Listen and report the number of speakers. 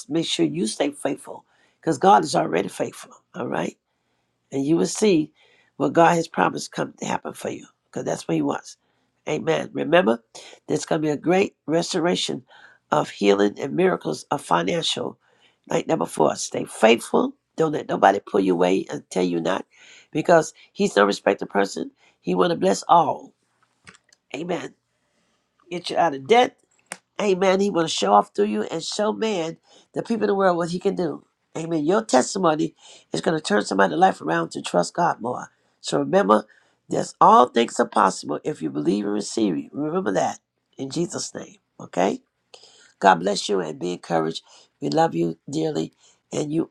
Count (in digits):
1